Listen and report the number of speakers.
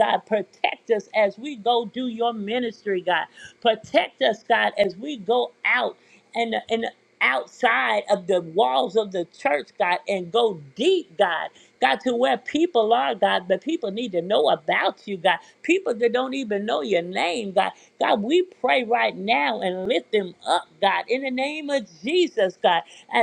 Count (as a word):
one